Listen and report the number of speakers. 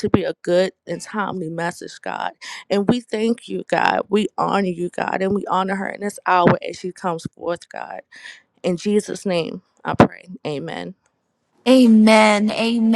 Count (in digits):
2